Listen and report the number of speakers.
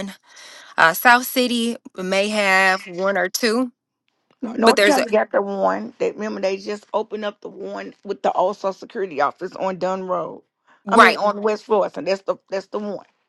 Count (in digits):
2